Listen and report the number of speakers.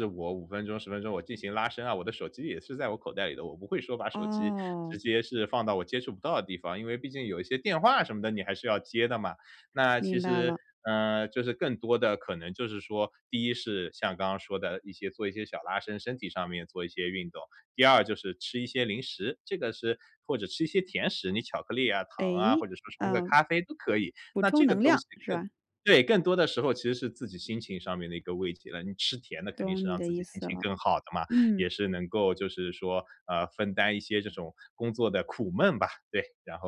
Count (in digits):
2